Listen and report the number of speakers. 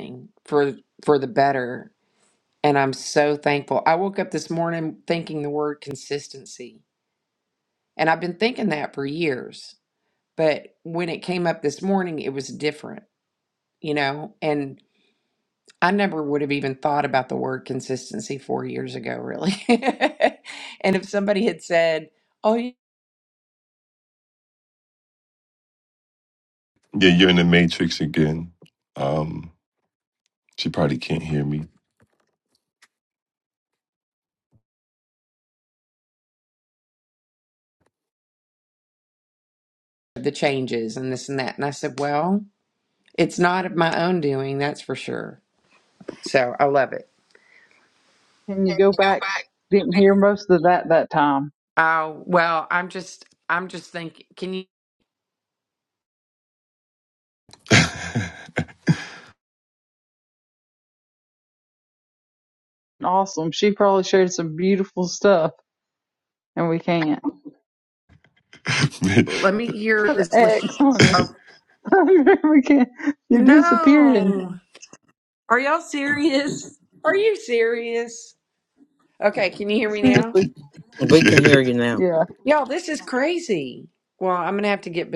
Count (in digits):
4